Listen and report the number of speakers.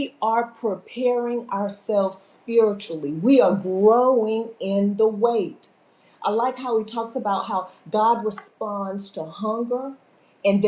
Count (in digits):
1